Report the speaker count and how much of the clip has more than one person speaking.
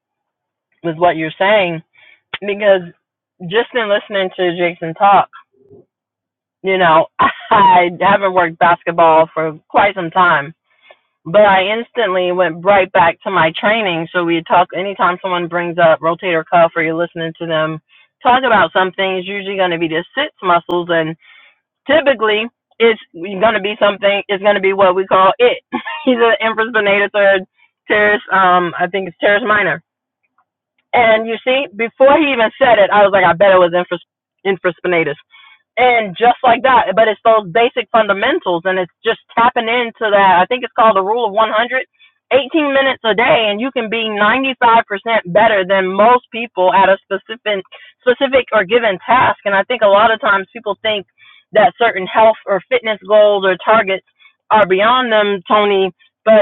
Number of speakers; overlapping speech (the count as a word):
one, no overlap